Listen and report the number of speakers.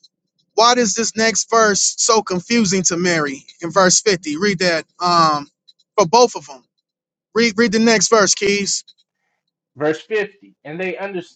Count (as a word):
two